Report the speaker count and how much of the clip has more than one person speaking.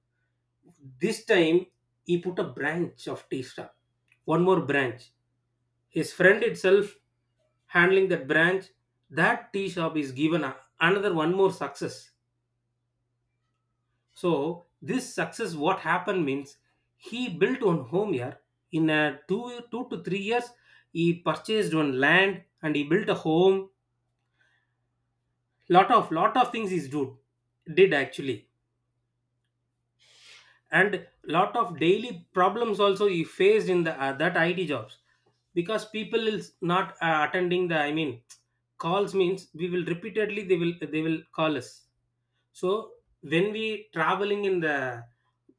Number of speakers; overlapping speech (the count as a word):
one, no overlap